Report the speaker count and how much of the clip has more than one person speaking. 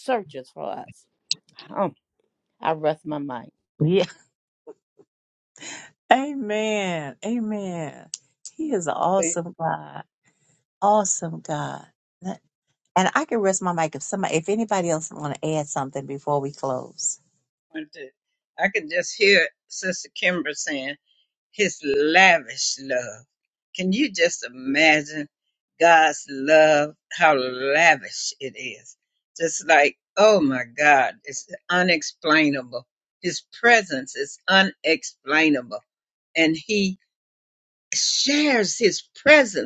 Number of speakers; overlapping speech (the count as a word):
three, under 1%